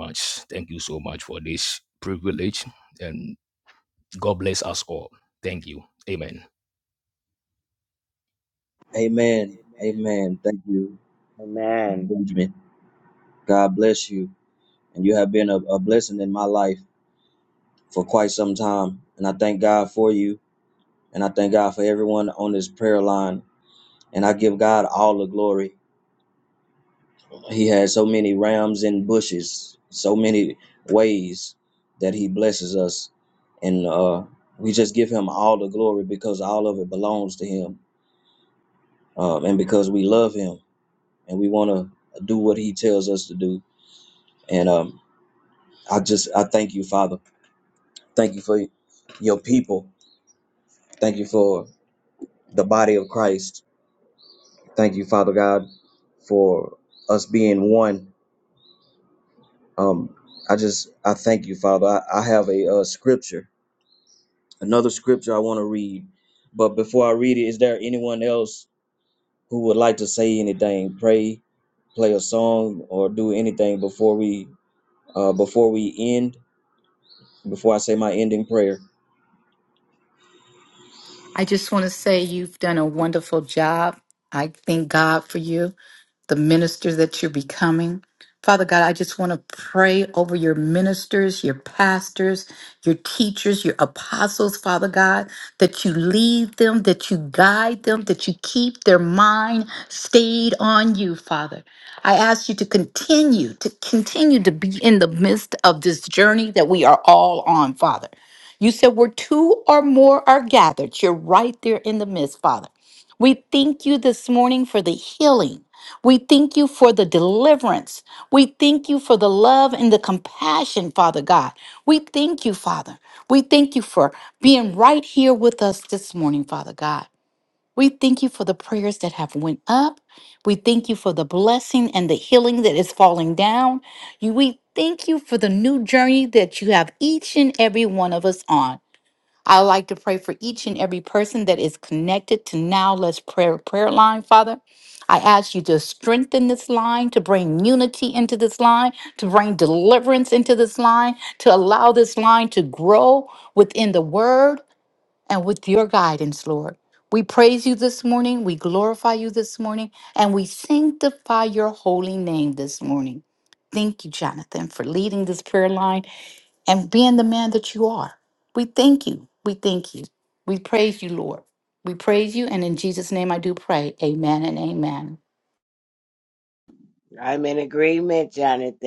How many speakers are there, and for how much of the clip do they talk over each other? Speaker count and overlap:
4, under 1%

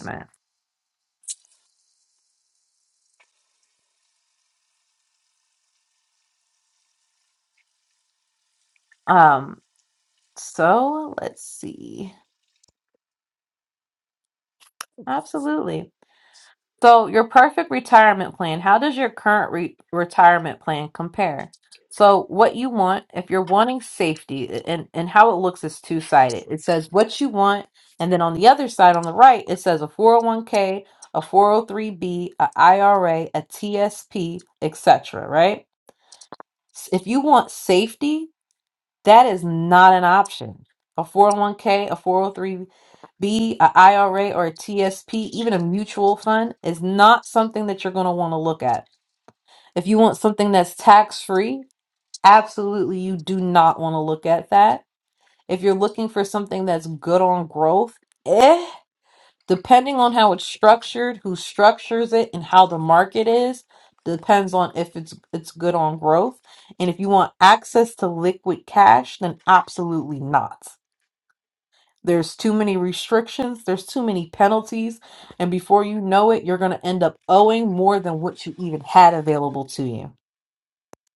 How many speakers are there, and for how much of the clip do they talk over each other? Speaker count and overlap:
1, no overlap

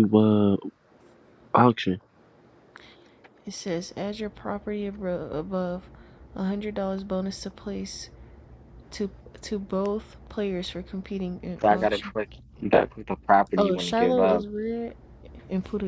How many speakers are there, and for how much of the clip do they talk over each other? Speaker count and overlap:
3, about 9%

